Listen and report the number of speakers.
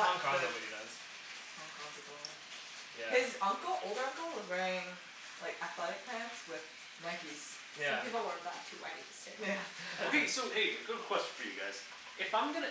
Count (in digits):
4